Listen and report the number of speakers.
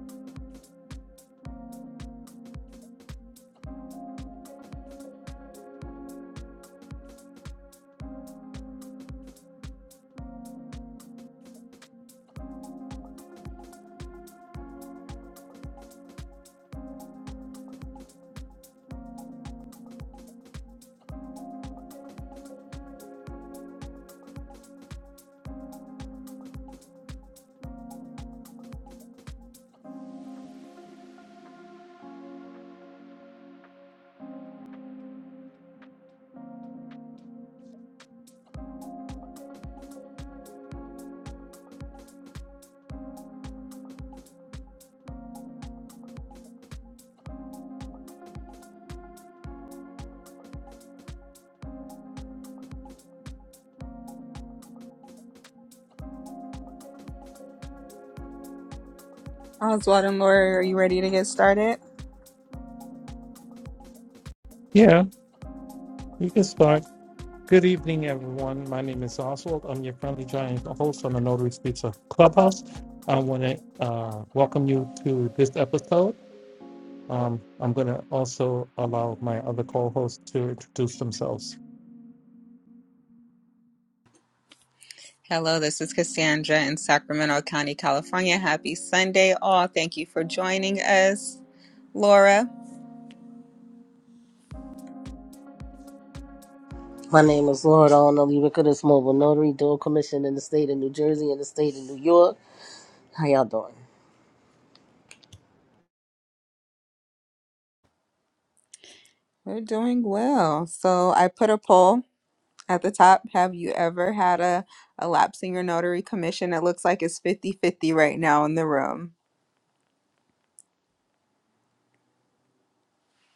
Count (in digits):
3